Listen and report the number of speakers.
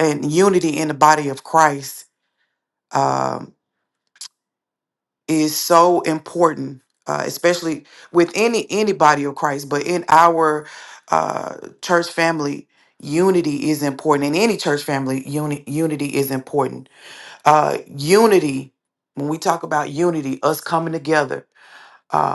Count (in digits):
1